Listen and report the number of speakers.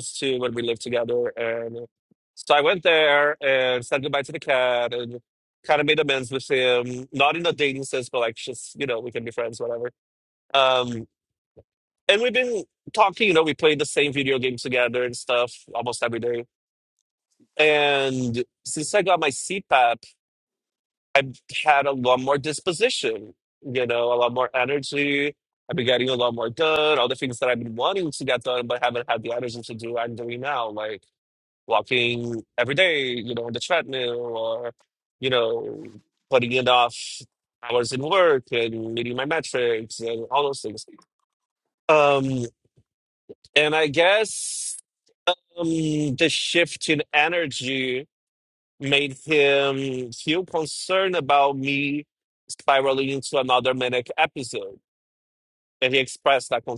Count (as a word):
one